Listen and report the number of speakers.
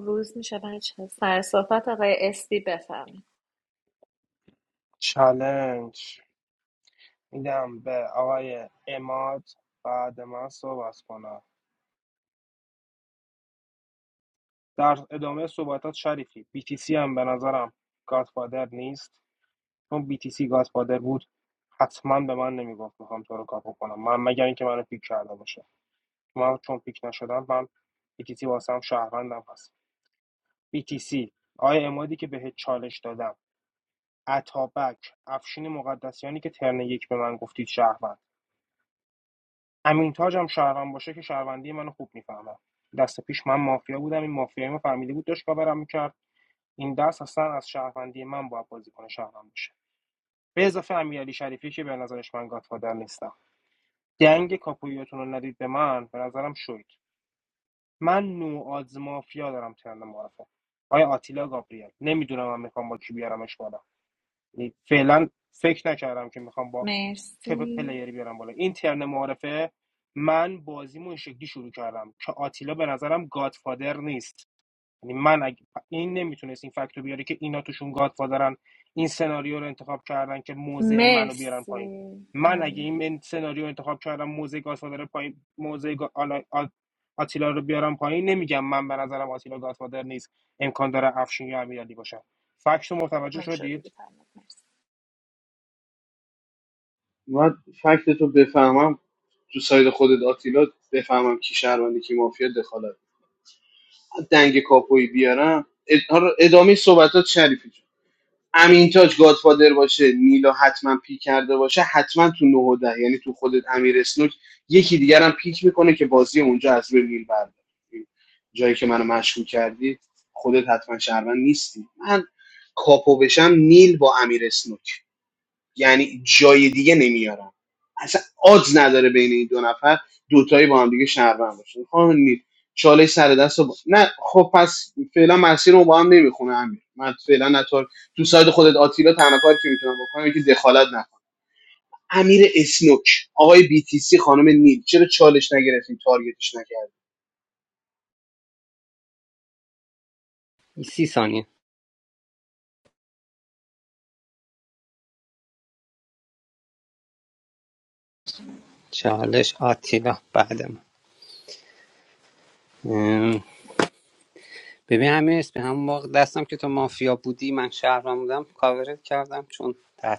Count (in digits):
4